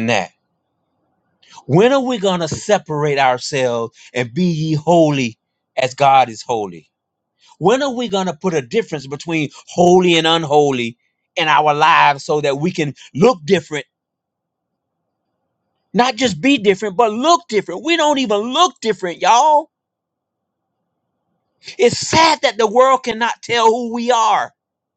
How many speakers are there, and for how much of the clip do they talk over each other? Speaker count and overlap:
one, no overlap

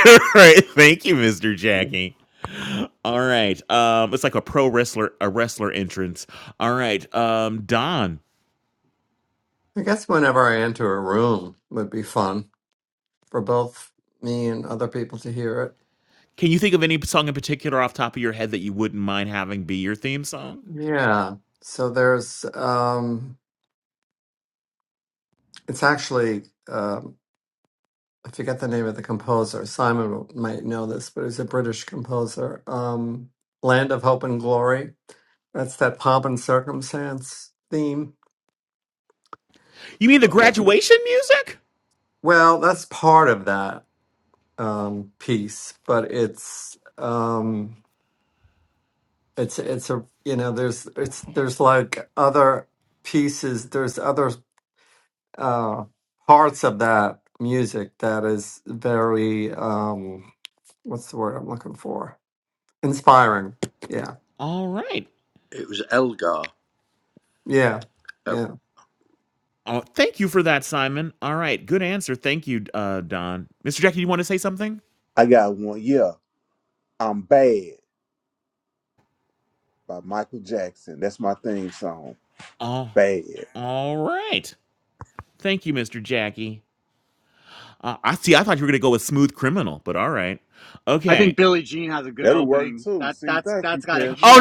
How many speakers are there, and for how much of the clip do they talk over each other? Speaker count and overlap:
five, about 3%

